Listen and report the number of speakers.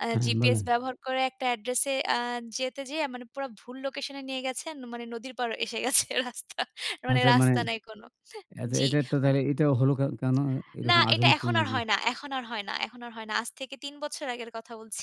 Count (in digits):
2